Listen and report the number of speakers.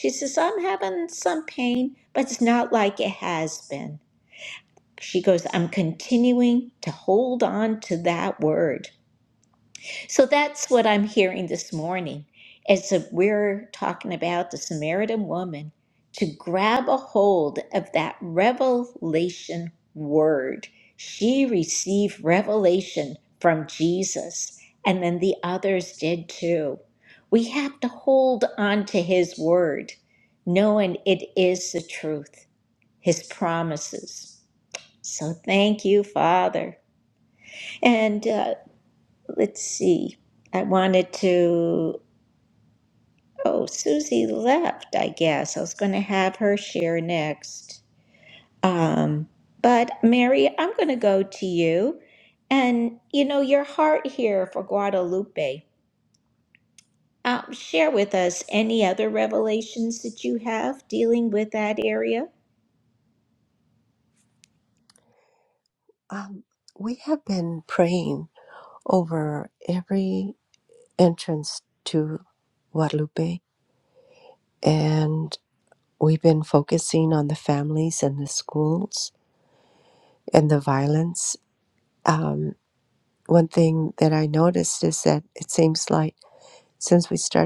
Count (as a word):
two